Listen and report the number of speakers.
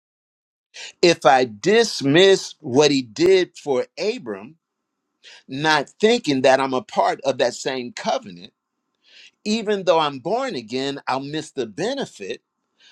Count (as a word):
one